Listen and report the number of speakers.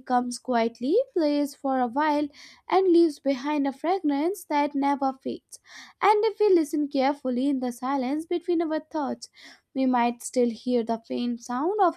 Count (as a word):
one